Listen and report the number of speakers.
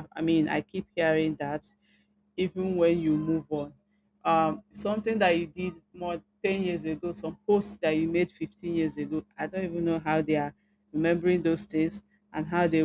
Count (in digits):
1